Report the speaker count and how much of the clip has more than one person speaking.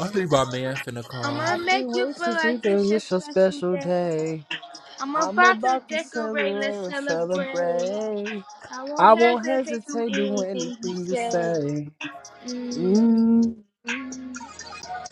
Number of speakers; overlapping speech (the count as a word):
three, about 56%